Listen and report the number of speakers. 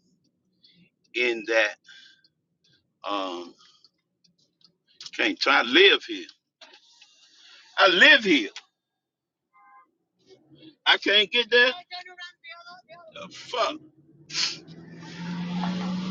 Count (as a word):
one